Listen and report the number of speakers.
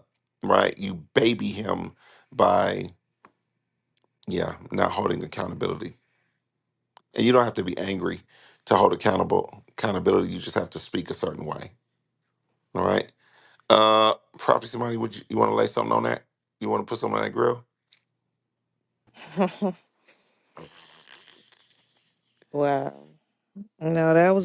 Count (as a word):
two